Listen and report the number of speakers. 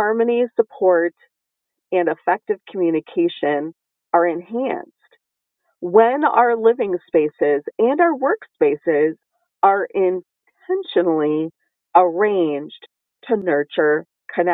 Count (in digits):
1